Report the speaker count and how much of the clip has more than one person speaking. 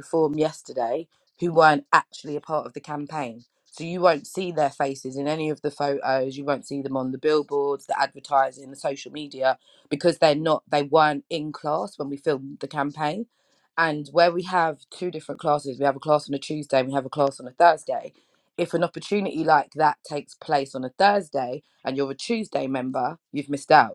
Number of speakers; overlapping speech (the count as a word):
one, no overlap